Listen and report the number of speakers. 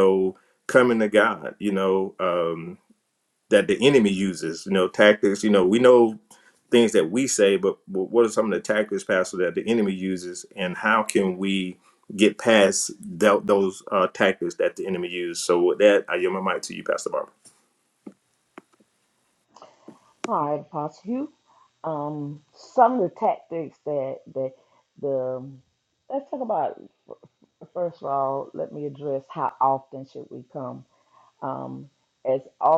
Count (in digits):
2